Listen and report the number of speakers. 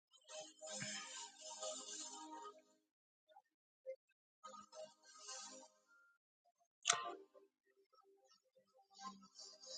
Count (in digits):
0